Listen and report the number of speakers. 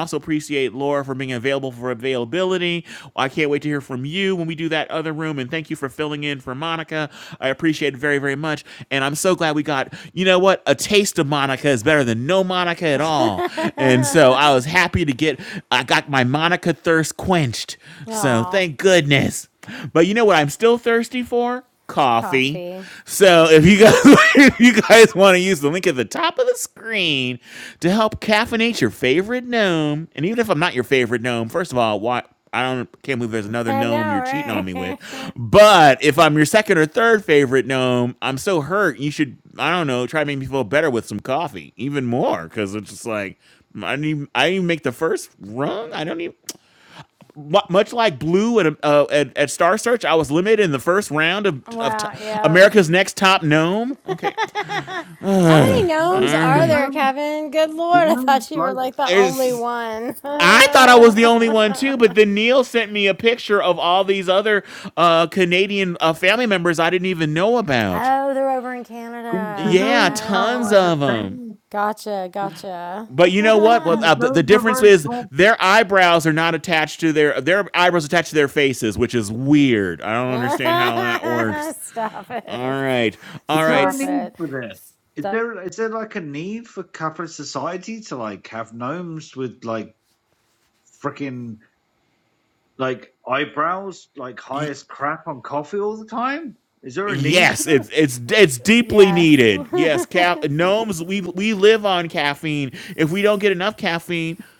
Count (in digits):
3